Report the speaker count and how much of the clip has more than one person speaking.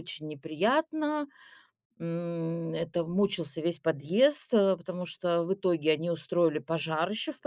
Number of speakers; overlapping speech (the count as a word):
one, no overlap